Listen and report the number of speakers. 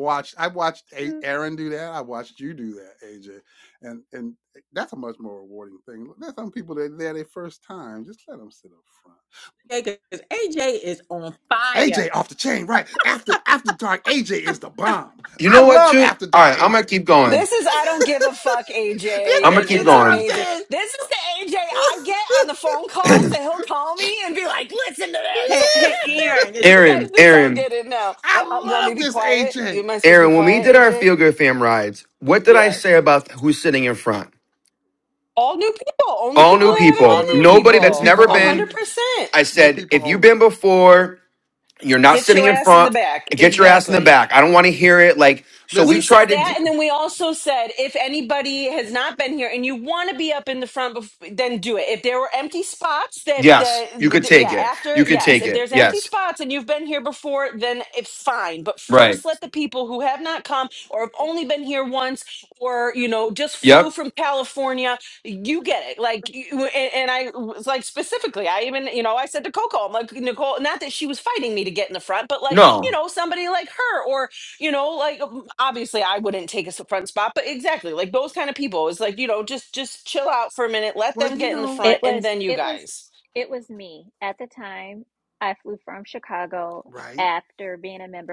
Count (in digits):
5